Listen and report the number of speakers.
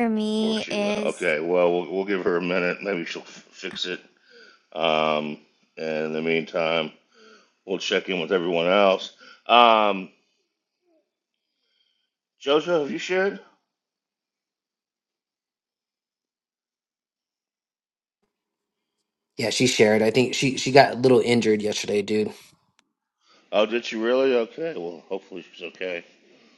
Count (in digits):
3